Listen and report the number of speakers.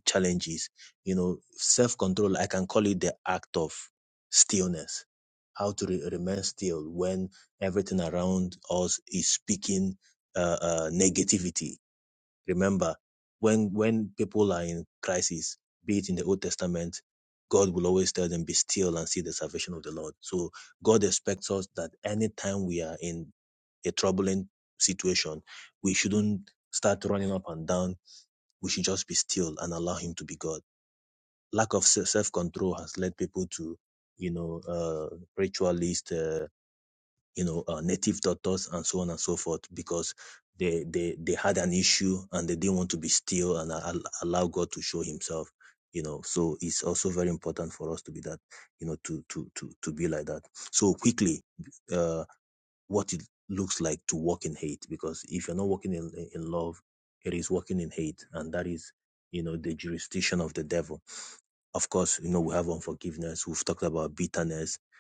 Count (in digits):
1